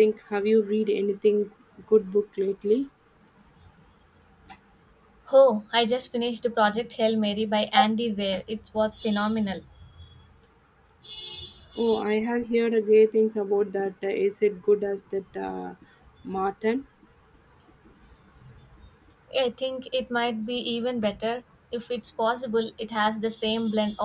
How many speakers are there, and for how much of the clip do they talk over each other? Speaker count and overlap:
two, no overlap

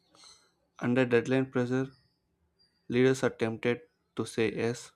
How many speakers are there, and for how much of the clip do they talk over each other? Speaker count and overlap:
one, no overlap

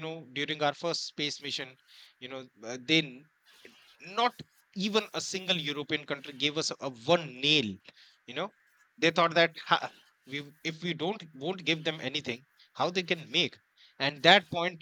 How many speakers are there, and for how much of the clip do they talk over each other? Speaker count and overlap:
one, no overlap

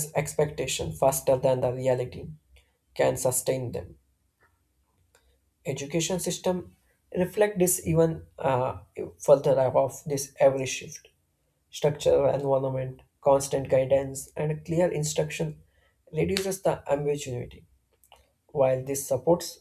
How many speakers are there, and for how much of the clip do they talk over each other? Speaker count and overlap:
one, no overlap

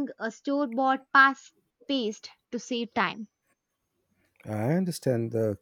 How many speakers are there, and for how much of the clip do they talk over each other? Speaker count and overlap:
two, no overlap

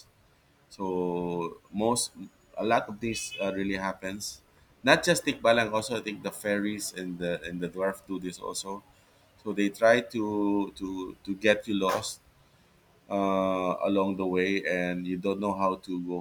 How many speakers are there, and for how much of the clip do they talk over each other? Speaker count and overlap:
one, no overlap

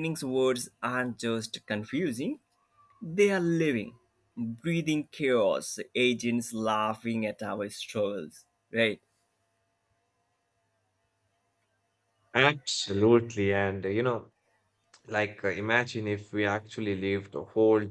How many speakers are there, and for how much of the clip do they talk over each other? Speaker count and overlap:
two, no overlap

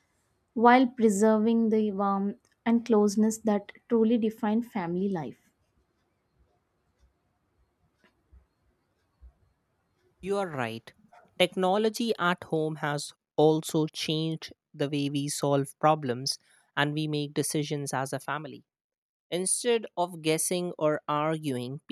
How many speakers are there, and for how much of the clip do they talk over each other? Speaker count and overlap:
two, no overlap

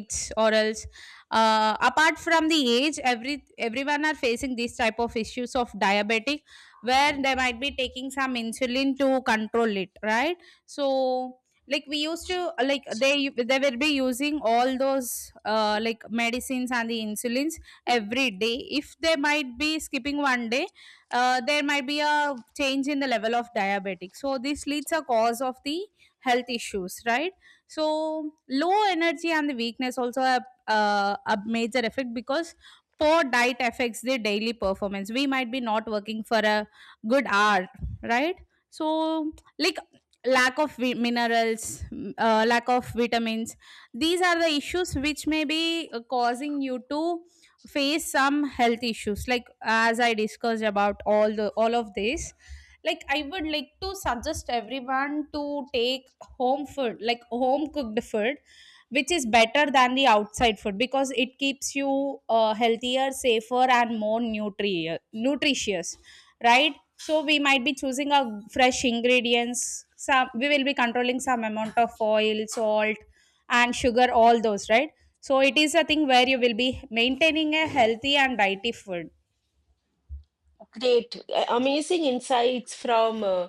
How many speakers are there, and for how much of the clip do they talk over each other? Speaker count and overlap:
two, no overlap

